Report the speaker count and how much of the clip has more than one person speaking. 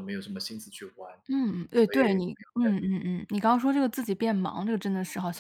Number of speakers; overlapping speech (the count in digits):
2, about 9%